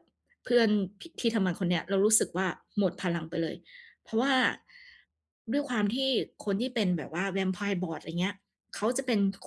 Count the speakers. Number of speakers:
1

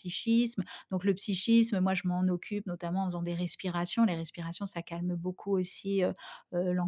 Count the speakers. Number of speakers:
1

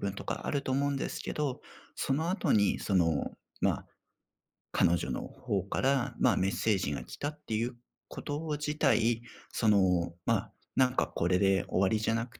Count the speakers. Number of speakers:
1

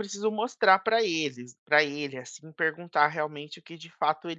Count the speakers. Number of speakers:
1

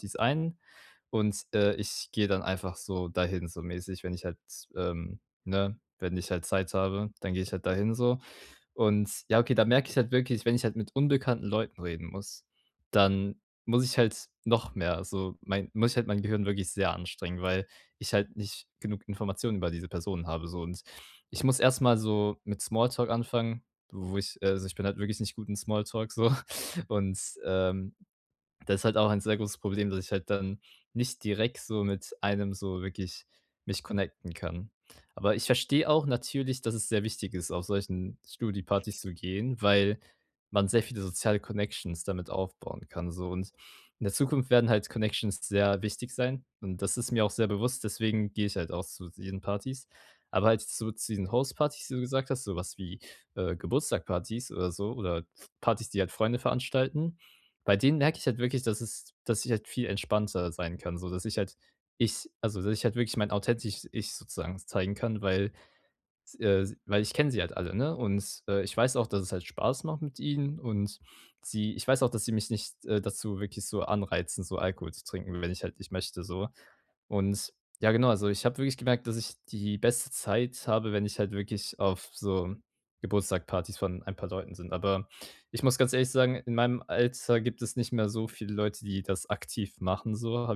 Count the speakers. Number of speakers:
1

